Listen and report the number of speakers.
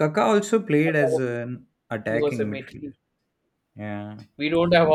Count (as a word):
two